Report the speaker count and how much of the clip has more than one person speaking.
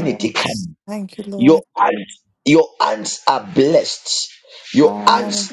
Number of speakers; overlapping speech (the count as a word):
two, about 22%